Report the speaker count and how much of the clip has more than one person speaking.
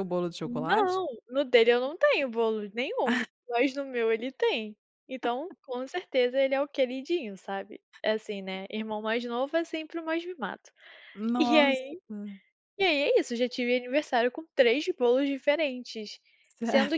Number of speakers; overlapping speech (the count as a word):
two, about 7%